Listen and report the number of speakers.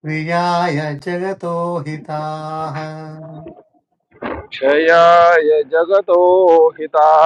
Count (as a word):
two